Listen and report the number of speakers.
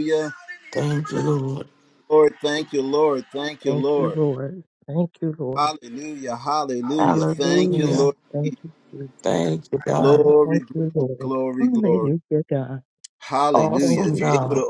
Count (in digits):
3